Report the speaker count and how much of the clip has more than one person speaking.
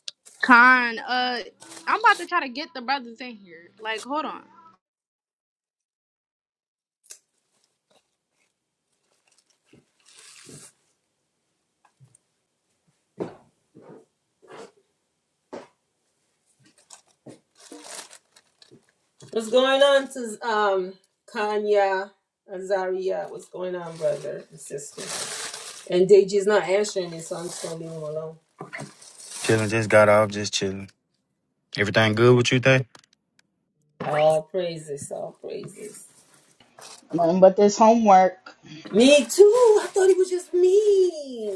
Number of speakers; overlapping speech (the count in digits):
4, no overlap